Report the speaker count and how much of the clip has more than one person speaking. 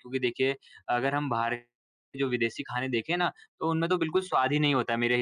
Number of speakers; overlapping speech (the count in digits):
1, no overlap